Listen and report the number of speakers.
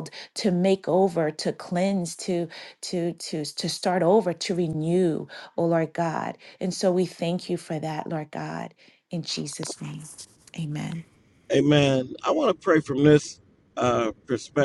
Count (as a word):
two